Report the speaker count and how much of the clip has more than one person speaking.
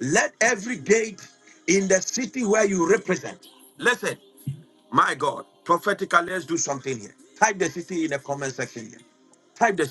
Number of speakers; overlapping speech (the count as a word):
one, no overlap